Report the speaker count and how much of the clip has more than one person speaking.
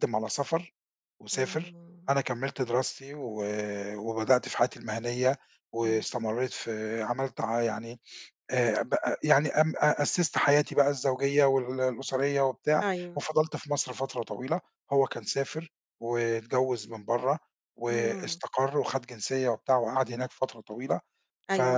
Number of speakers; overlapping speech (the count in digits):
2, about 5%